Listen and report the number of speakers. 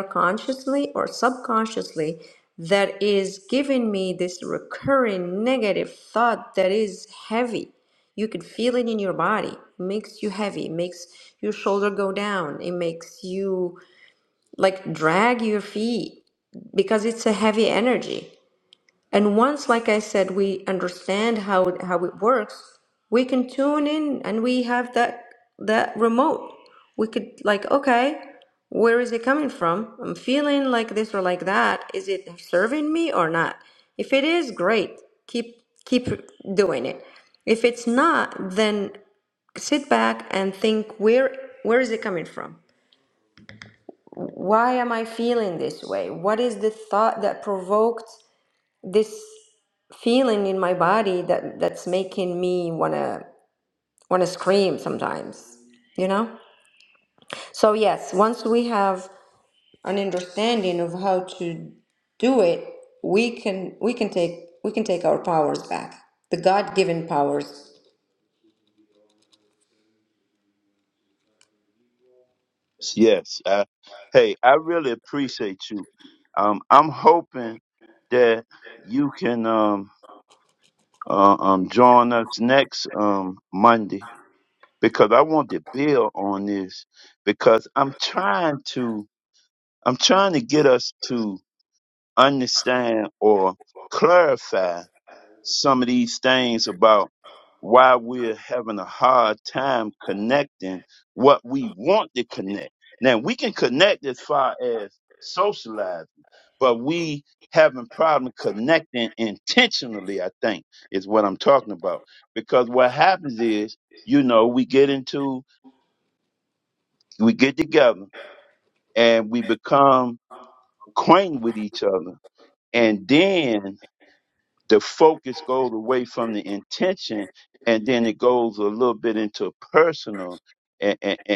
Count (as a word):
two